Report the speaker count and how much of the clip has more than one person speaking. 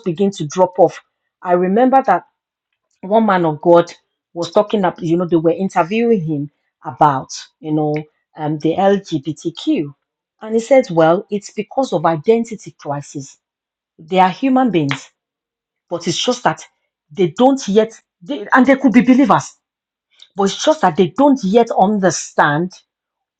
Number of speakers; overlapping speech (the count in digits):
1, no overlap